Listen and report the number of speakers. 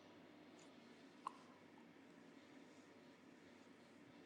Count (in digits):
0